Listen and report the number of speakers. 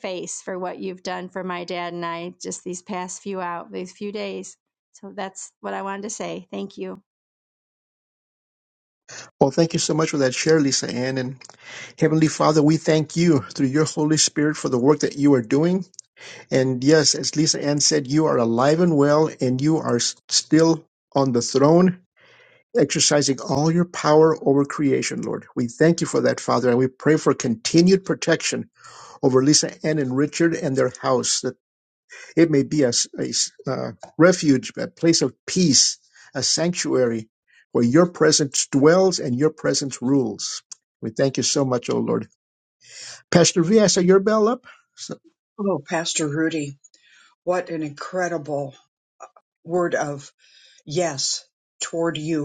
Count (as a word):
three